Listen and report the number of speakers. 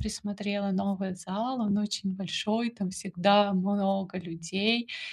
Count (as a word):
one